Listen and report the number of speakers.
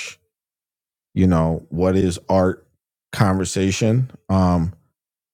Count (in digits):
1